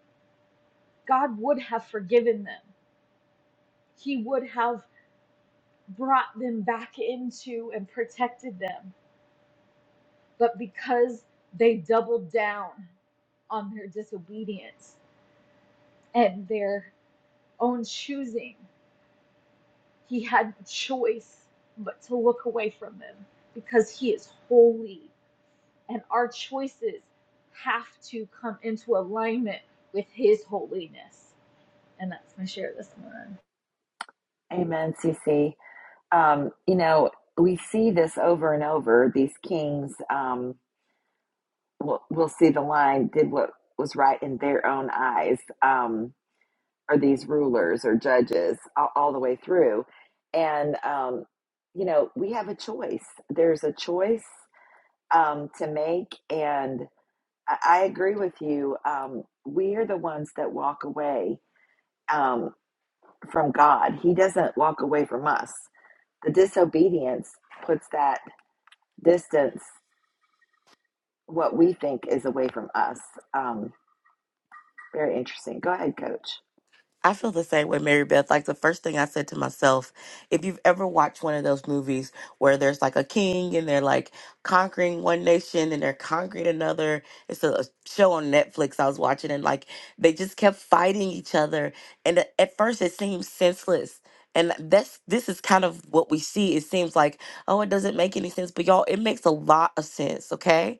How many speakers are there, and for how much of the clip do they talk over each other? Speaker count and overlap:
3, no overlap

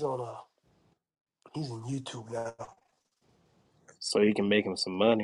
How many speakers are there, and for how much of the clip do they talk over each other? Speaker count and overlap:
2, no overlap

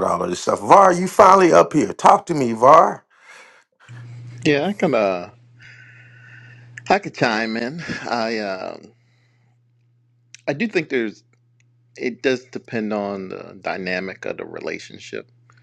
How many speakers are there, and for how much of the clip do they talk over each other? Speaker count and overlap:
2, no overlap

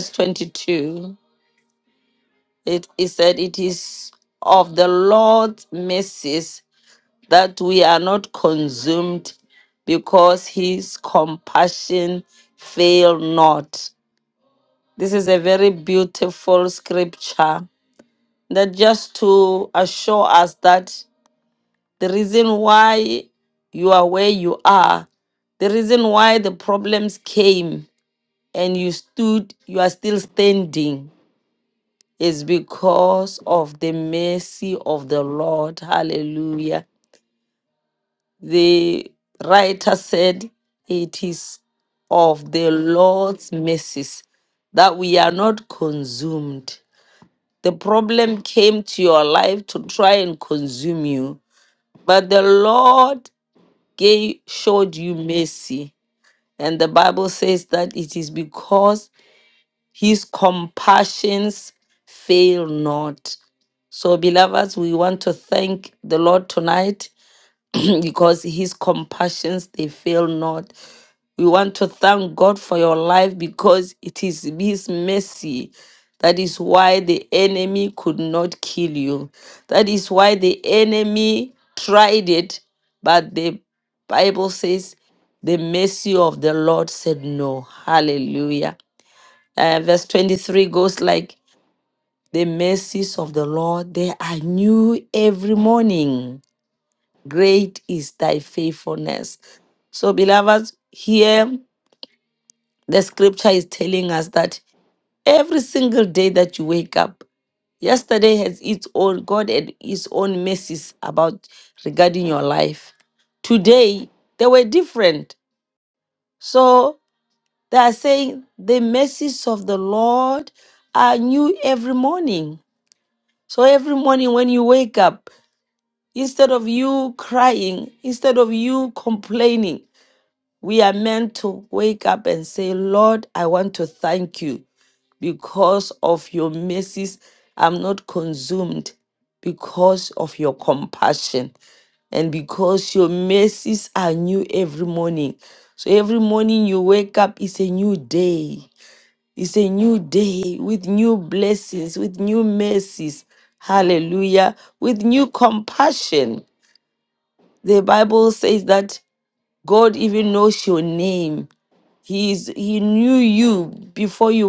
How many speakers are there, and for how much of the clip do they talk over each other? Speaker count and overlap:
1, no overlap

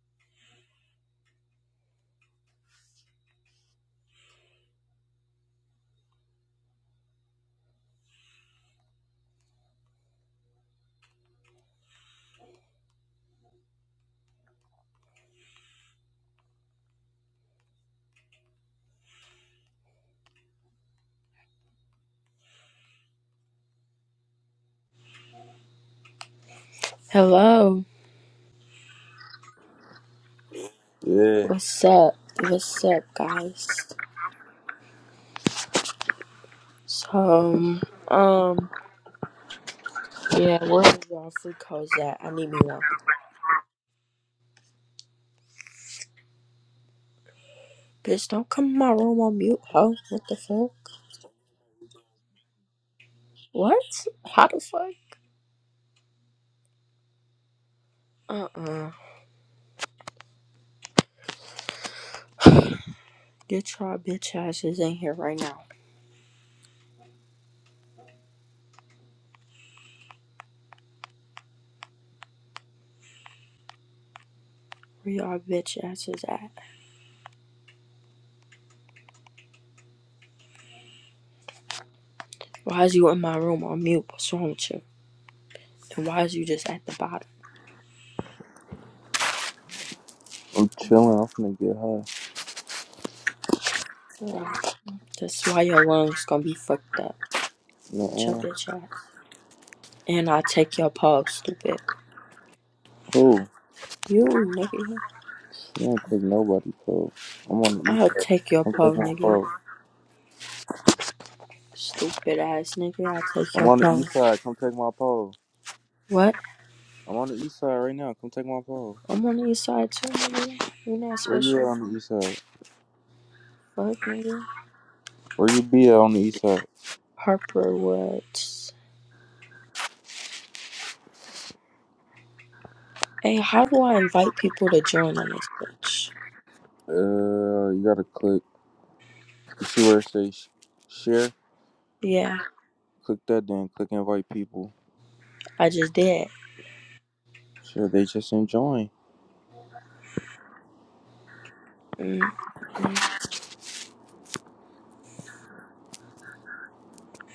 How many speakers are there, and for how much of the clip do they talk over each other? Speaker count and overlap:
2, about 2%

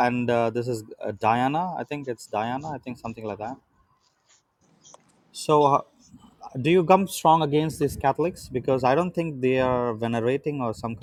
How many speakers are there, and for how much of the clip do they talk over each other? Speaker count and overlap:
1, no overlap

